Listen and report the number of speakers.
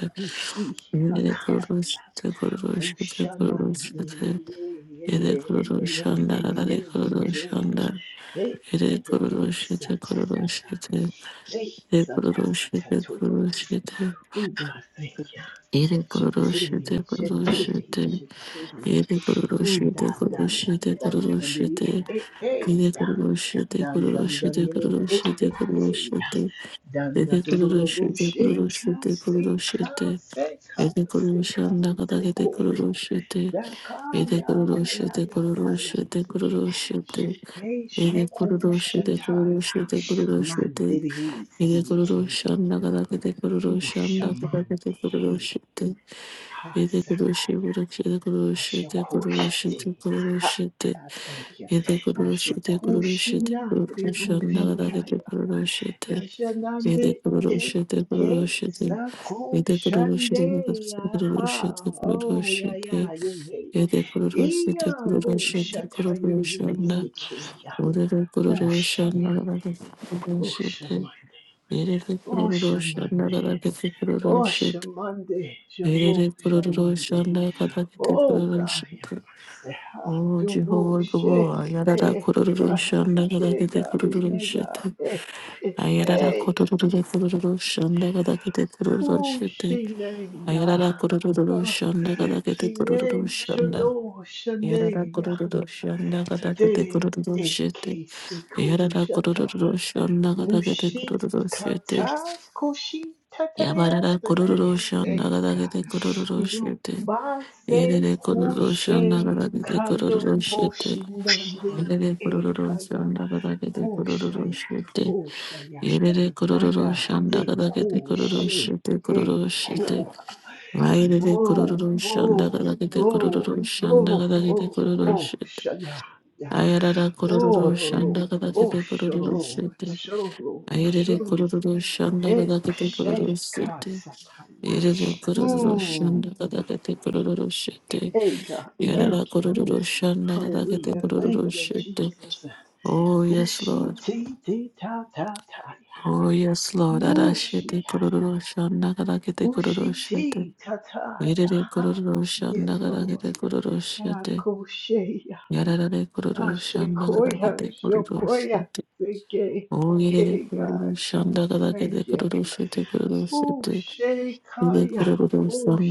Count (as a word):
two